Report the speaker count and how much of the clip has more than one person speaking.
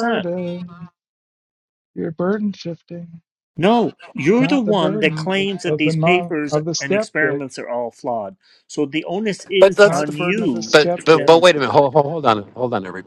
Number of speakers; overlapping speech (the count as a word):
three, about 41%